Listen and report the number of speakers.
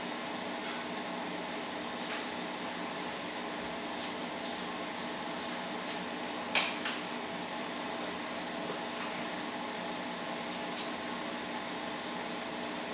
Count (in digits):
0